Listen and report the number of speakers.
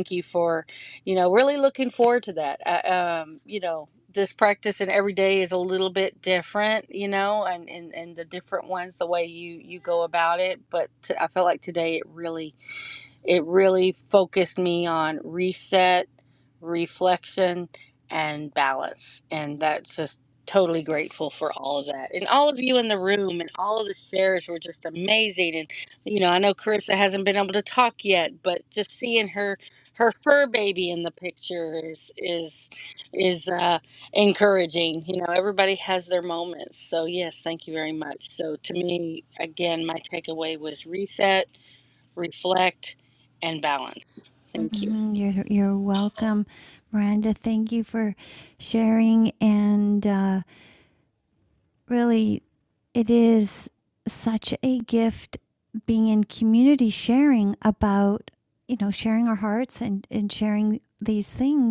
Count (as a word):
two